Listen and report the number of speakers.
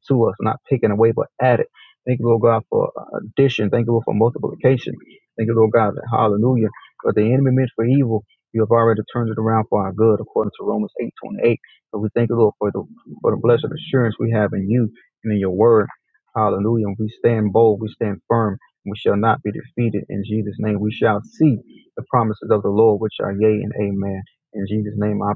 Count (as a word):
one